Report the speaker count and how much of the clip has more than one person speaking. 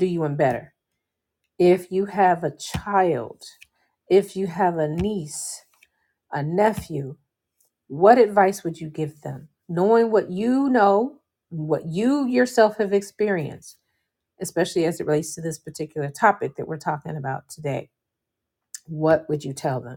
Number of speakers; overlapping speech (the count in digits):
1, no overlap